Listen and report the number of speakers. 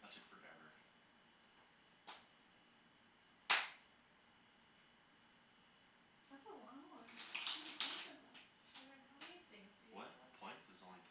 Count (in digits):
3